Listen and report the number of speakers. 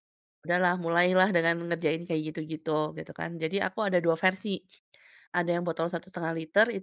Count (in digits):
1